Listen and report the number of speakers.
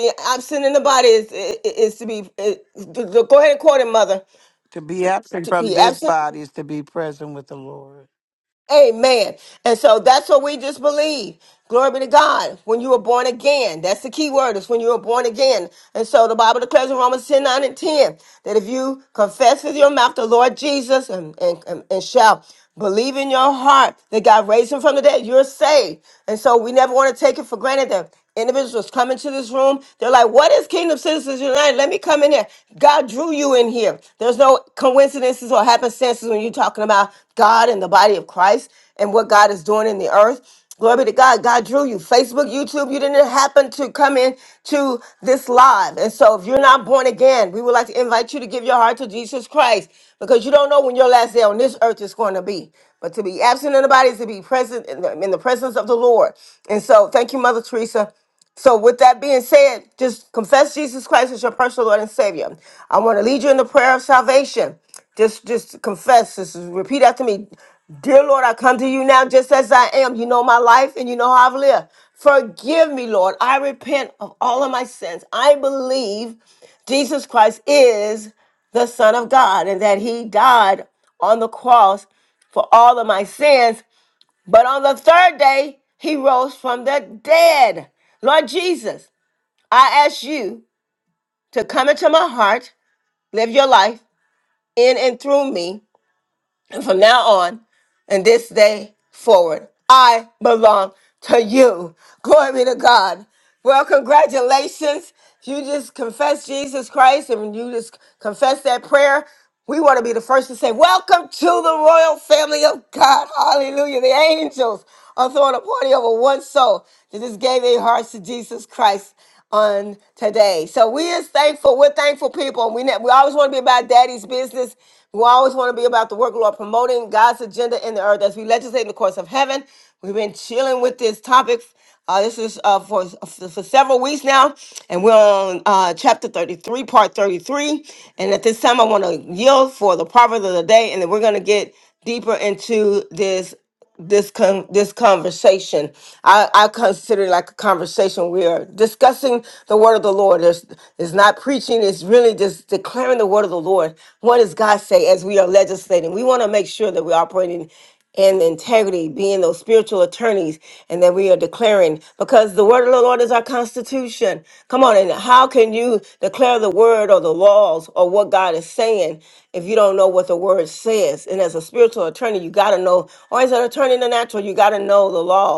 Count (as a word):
two